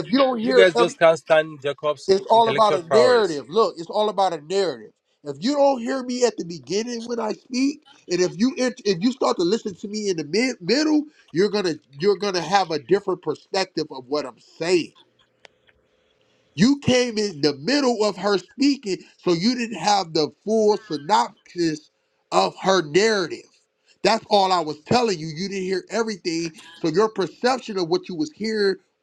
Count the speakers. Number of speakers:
2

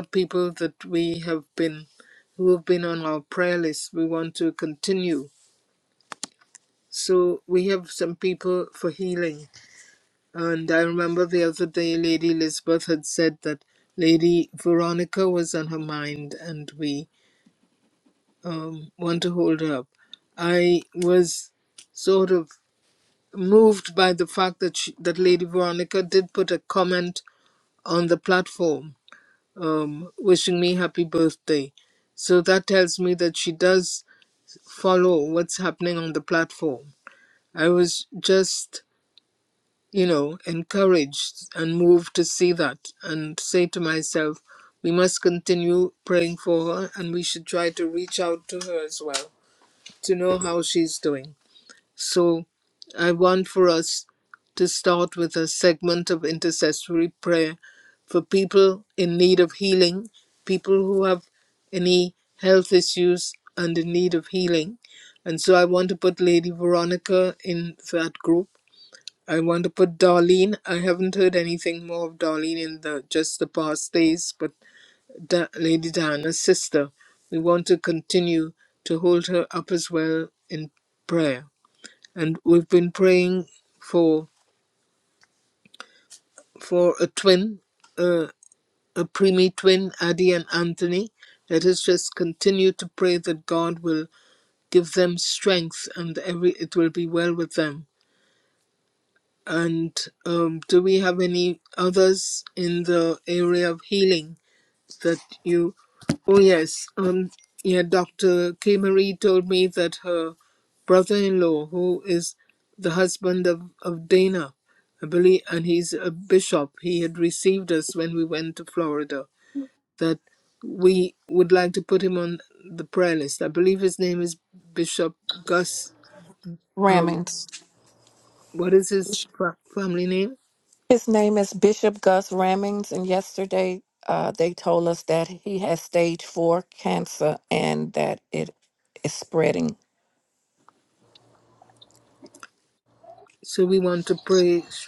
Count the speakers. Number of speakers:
2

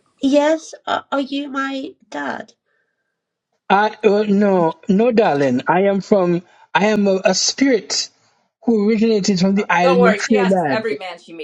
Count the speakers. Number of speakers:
3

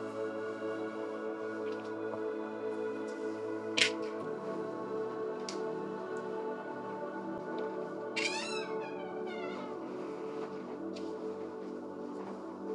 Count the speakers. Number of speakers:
0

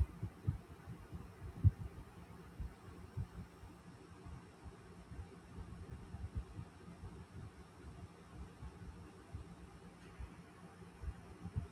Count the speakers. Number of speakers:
0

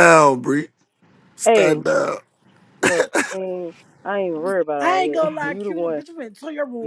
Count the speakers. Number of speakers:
3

